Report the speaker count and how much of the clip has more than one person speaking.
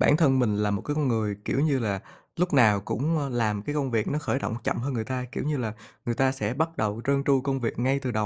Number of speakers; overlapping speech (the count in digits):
1, no overlap